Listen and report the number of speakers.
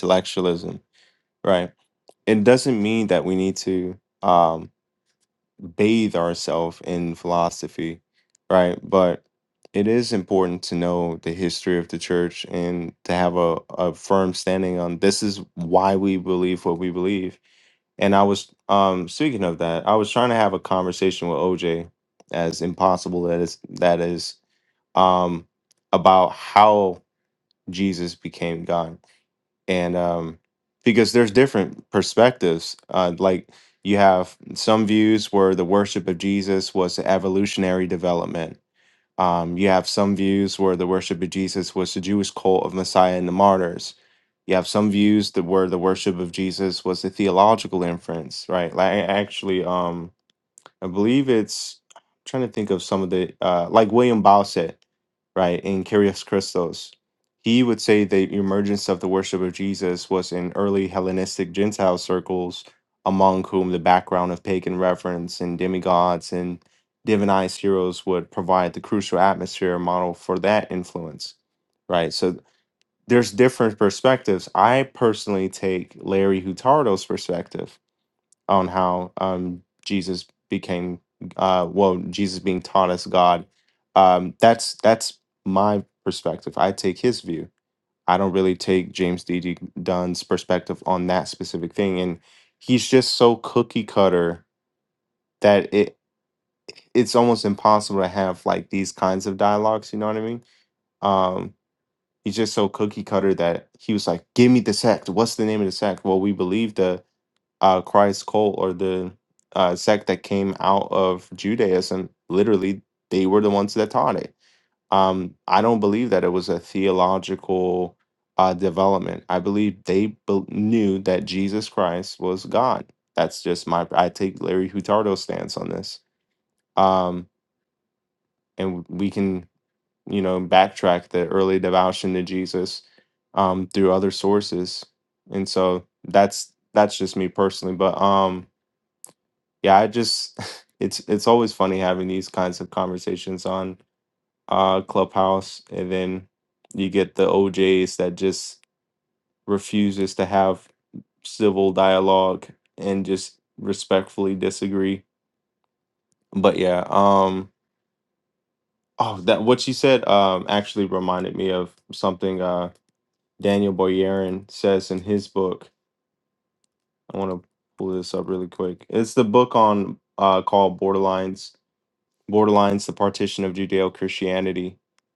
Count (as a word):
one